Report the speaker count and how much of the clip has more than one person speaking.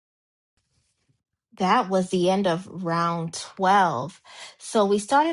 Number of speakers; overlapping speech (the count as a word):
one, no overlap